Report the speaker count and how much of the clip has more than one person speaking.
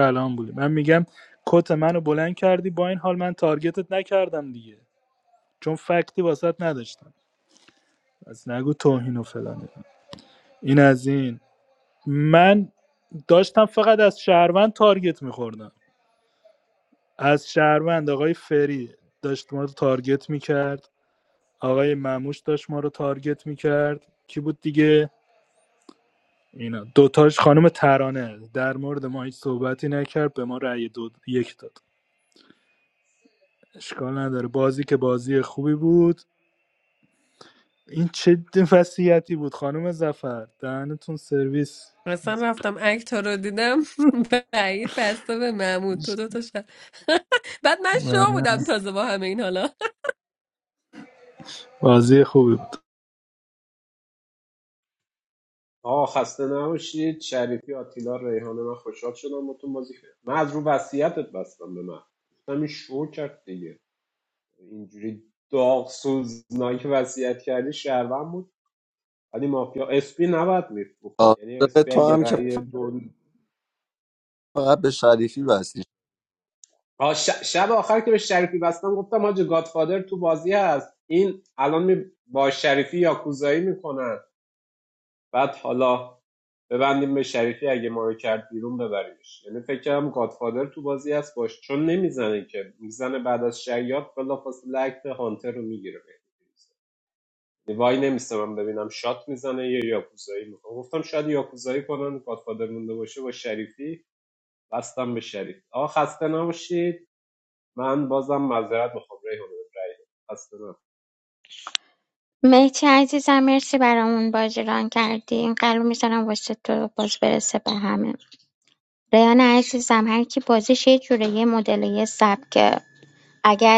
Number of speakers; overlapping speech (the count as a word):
five, about 1%